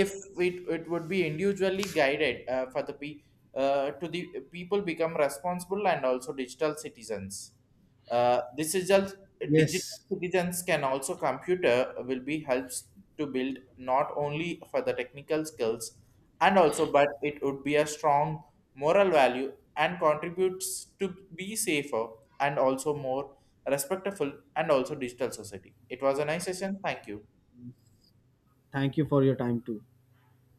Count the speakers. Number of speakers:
two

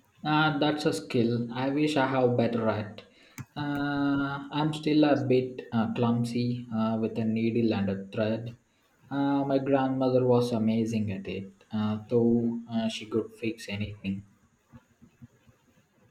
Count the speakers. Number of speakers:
one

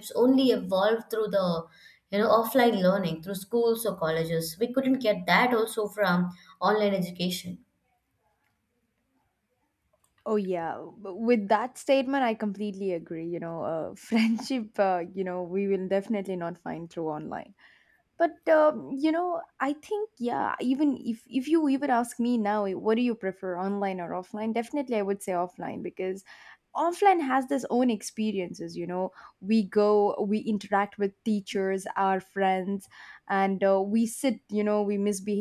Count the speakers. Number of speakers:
two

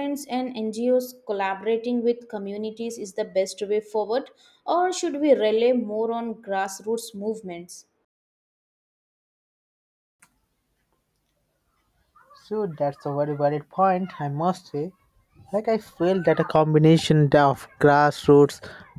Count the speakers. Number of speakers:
two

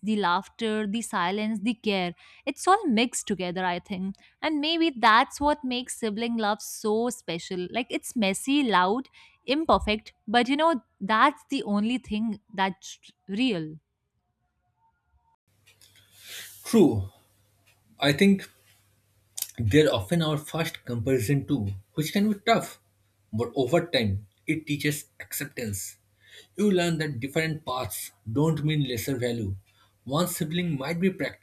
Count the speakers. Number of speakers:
two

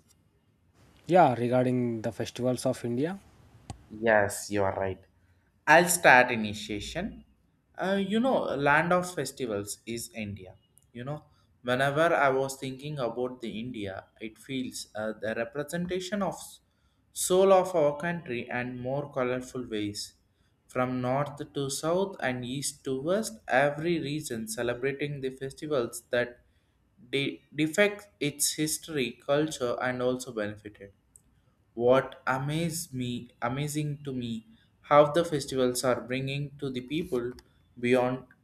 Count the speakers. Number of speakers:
two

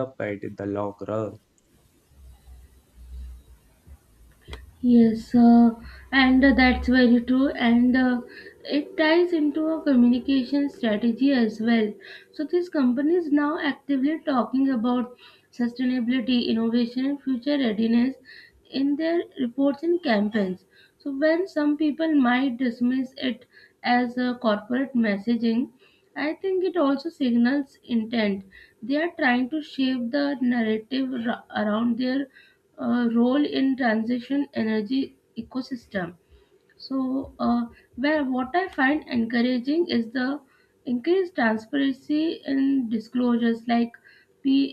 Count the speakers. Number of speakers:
two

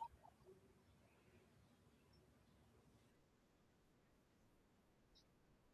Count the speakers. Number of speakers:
zero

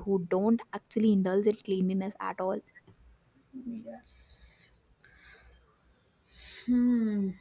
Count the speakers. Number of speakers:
two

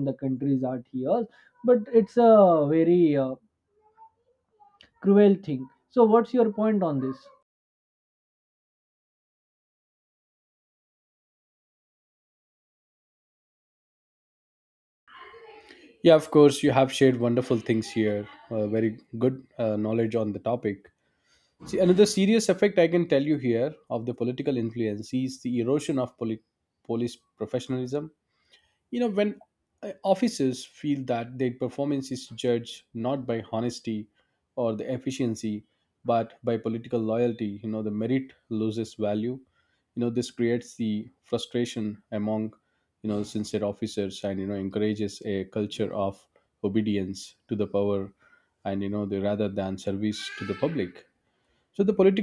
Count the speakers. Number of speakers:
two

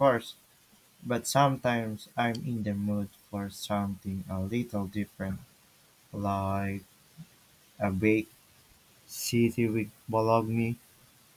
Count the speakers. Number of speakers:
one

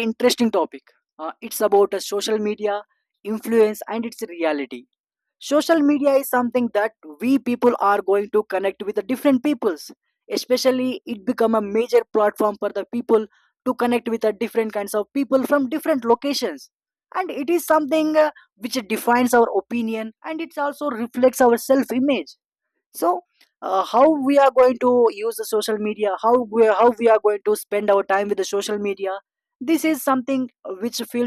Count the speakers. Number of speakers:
one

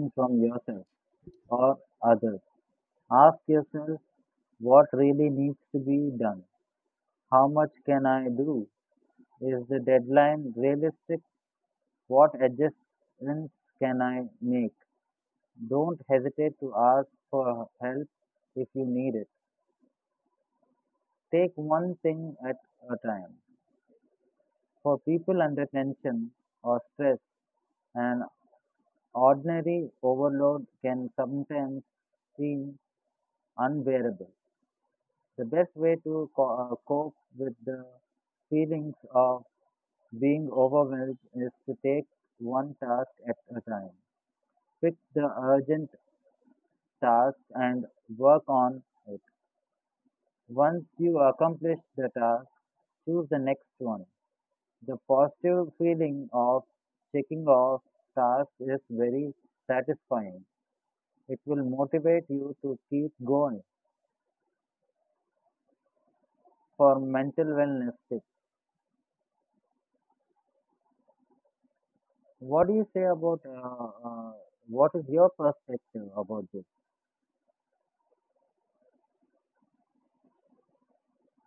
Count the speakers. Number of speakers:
one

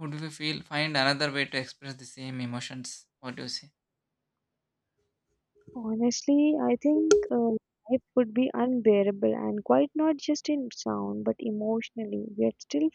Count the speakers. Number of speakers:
two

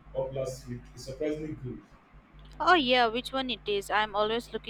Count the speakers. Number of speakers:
two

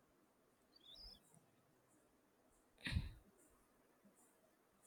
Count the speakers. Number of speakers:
zero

